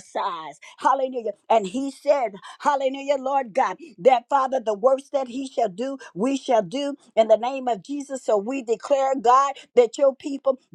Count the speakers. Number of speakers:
one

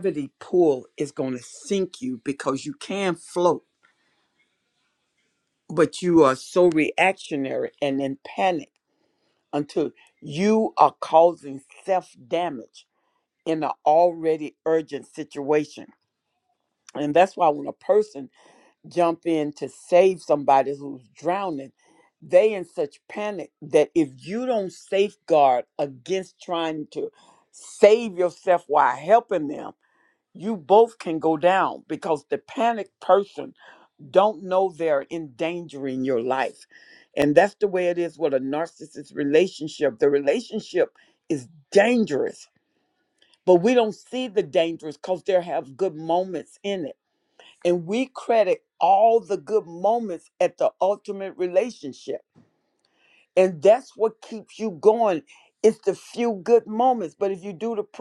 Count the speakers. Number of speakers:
one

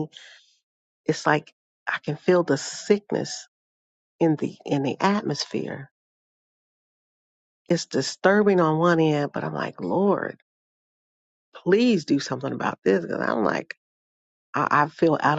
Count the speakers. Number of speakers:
one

